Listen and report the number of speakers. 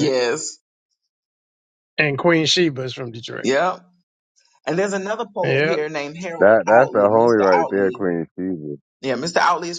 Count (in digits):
3